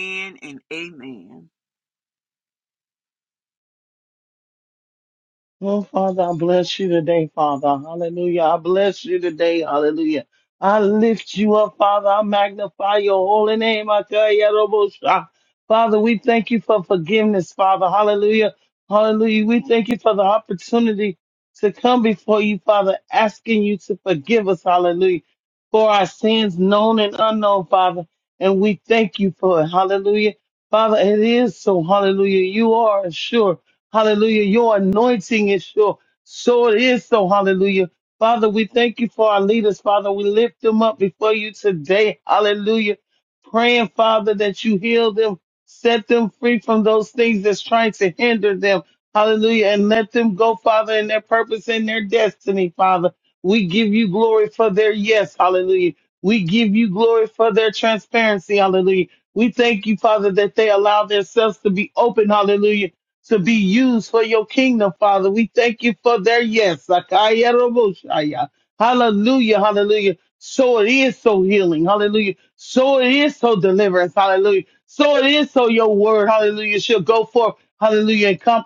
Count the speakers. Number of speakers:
2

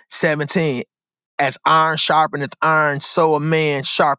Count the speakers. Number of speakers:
1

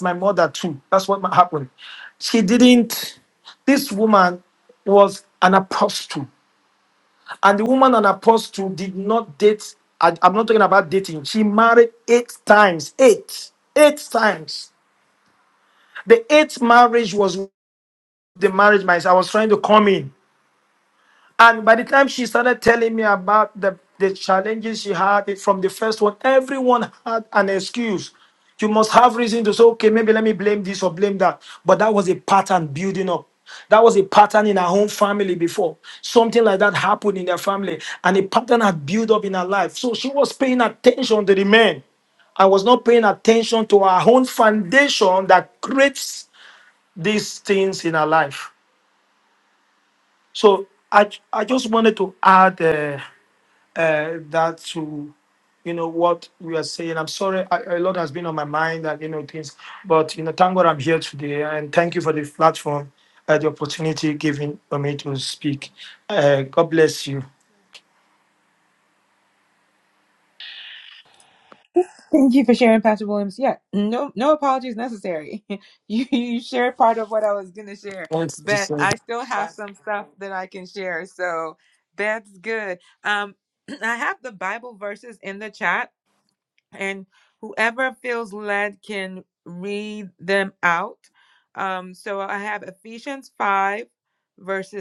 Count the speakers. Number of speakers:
2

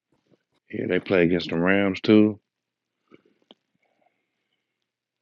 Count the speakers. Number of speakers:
1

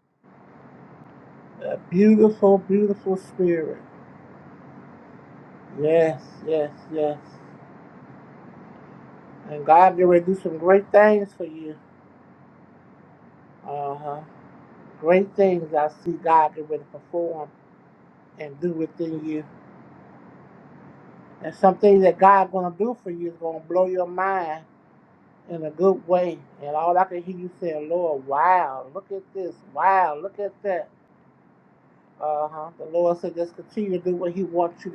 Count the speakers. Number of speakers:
1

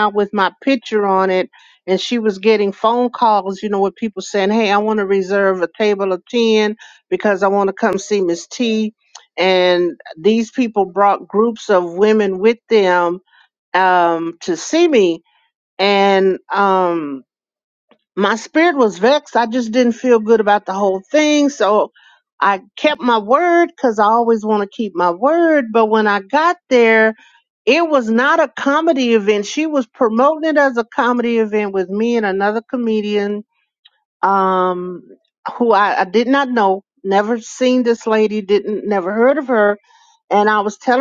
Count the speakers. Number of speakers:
1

